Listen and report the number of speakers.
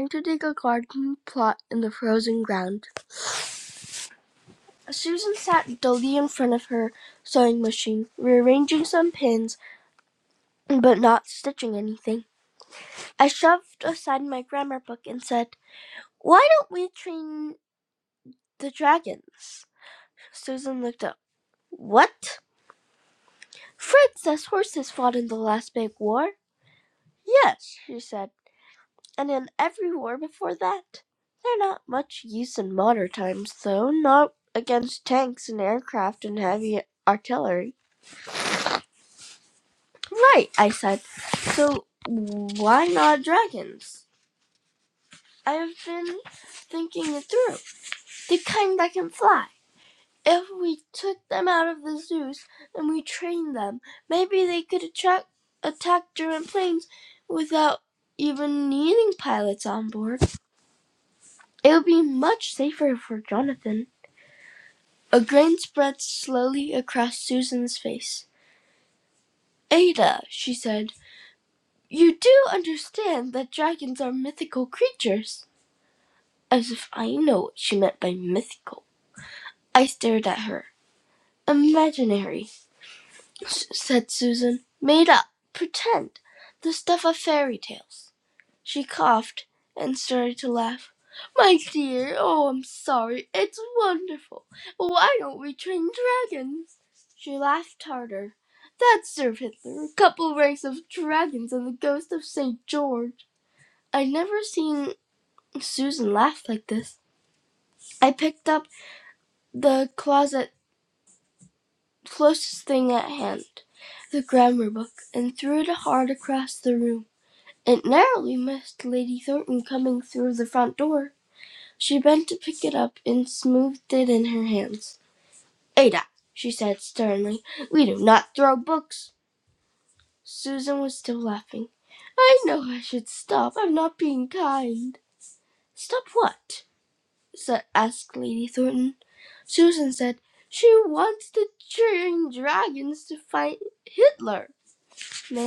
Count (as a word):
one